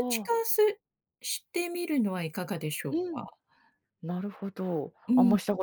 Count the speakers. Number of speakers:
two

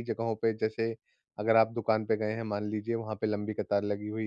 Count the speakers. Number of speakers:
one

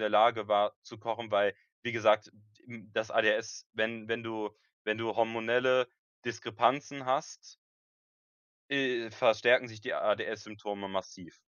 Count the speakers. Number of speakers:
one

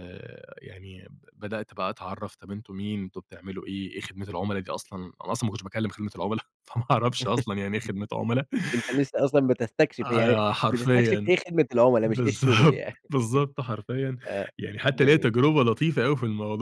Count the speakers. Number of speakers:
two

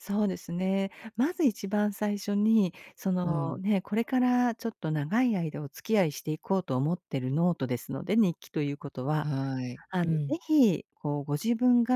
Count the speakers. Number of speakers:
two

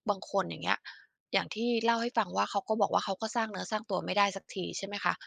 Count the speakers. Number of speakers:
one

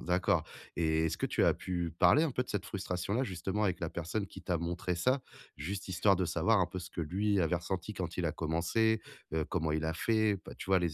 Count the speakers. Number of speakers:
one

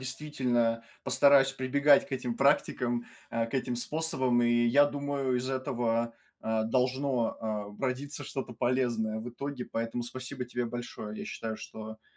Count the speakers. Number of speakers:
one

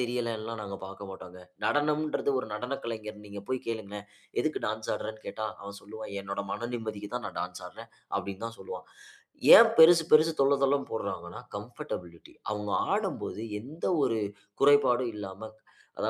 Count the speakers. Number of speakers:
one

